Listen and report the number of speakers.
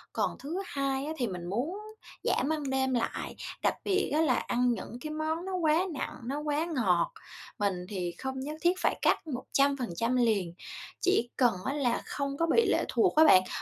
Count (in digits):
1